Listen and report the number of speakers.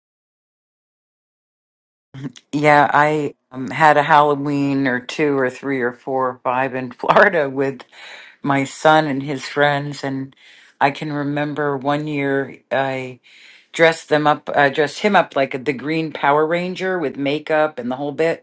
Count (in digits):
1